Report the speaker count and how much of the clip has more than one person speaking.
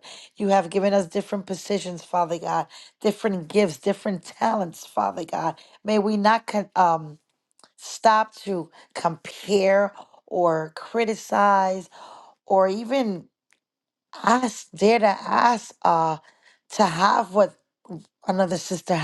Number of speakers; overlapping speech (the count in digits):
1, no overlap